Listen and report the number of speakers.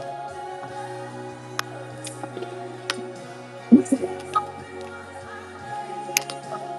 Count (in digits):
0